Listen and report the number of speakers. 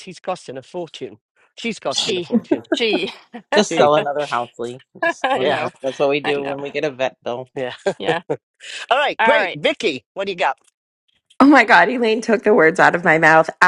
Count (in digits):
4